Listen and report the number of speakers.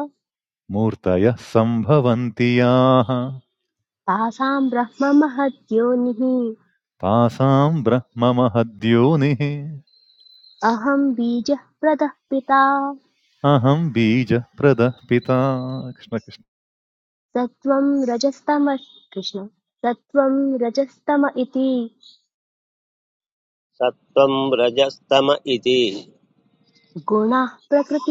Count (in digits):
3